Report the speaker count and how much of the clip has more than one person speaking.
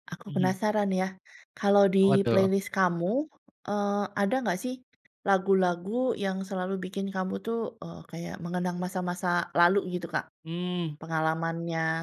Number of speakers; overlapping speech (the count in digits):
2, about 6%